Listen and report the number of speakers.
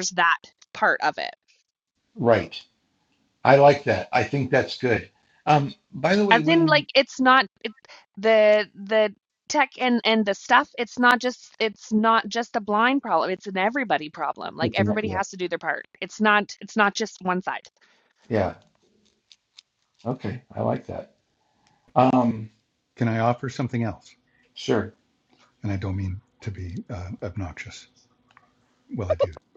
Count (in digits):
3